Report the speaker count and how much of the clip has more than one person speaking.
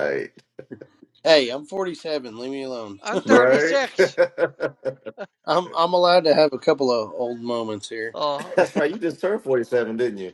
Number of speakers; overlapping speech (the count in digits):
3, about 7%